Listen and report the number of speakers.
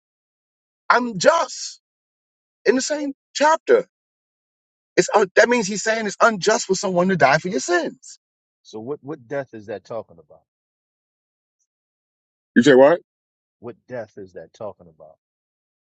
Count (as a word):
two